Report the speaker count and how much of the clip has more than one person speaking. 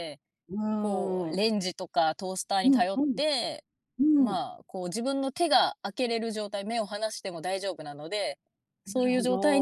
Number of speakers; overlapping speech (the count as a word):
two, about 21%